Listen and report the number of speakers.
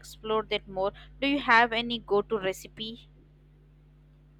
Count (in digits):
1